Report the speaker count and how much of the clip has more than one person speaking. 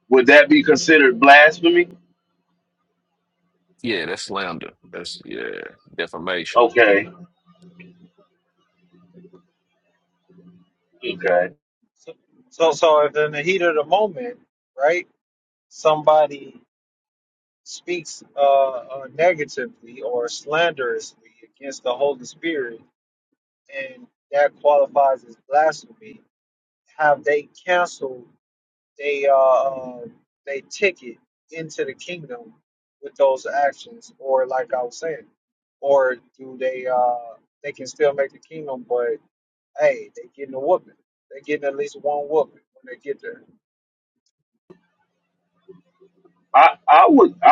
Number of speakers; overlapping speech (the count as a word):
three, under 1%